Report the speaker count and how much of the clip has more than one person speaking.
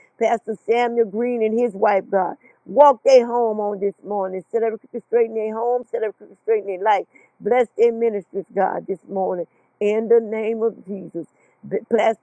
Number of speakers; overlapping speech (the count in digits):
1, no overlap